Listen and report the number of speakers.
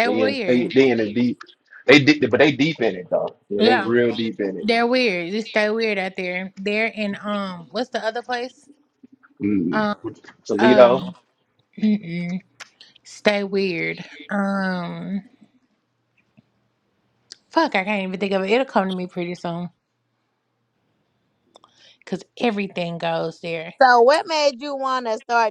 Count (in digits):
3